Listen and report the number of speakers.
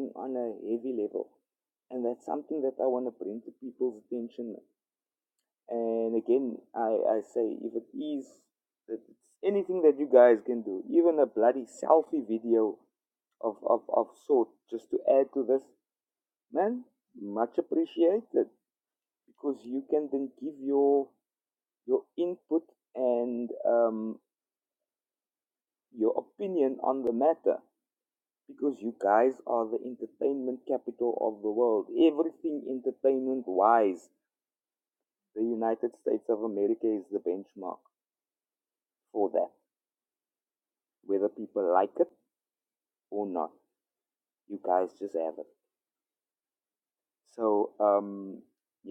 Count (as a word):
one